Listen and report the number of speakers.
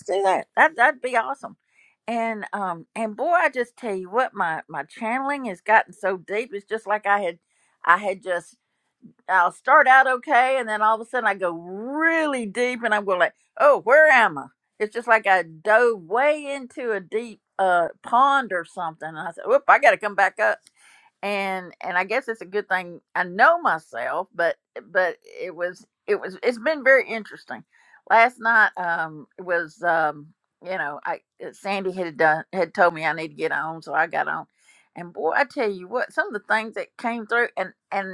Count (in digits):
1